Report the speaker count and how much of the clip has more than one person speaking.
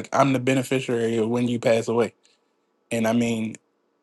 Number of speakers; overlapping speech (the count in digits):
1, no overlap